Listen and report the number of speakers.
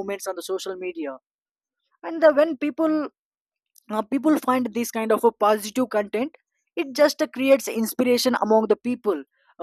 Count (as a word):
one